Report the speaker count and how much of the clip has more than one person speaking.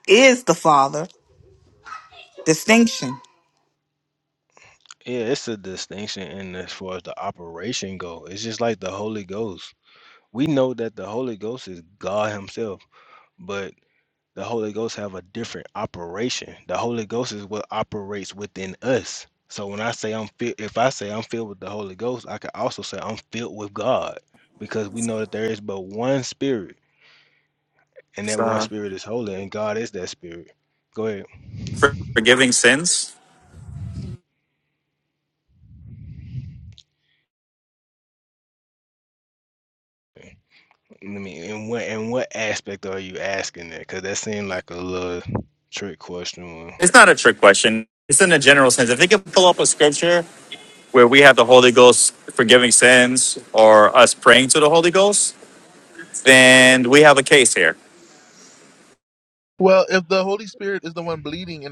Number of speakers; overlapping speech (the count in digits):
4, under 1%